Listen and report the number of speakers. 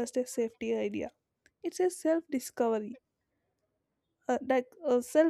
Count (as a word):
one